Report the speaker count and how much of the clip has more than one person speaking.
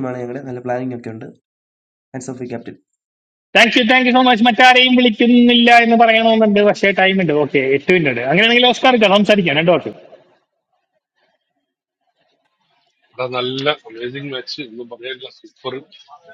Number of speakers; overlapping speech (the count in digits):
3, no overlap